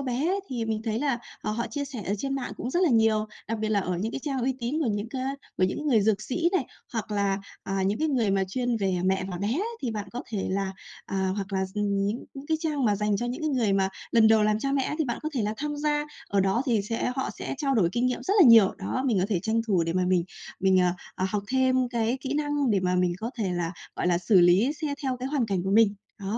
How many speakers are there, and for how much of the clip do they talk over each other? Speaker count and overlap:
1, no overlap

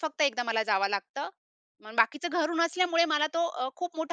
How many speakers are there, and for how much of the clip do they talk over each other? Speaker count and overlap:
1, no overlap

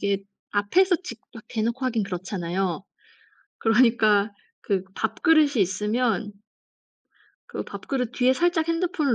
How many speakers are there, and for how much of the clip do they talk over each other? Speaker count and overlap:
1, no overlap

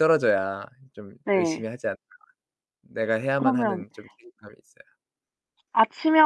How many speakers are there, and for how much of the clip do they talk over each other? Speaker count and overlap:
2, about 12%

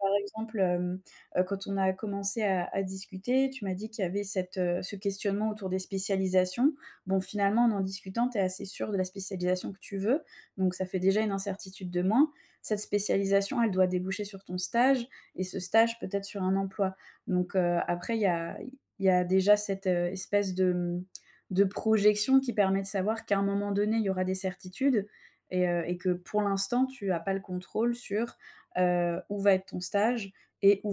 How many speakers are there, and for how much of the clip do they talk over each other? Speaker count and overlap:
1, no overlap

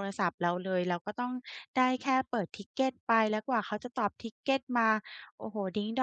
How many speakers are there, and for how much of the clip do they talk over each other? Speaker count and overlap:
1, no overlap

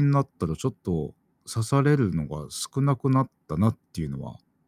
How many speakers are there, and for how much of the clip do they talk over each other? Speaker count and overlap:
1, no overlap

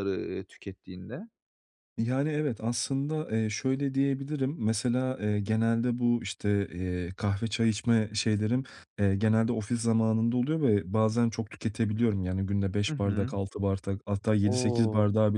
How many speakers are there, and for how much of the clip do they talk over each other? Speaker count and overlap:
2, about 7%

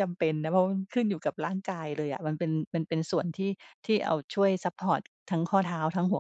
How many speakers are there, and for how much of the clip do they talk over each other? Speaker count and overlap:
1, no overlap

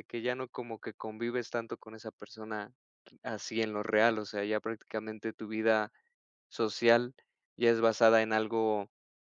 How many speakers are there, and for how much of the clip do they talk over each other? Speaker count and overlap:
1, no overlap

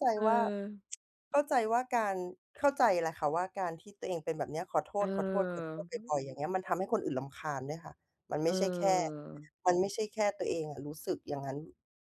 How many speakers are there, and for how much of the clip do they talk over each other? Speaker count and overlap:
2, about 4%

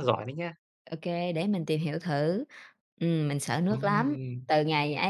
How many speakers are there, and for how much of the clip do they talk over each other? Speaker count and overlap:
2, about 14%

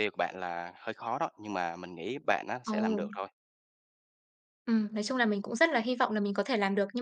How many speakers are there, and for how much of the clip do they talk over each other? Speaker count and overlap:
2, about 6%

